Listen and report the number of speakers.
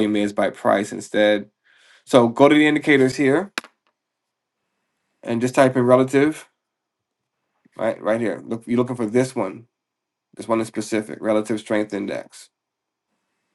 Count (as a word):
one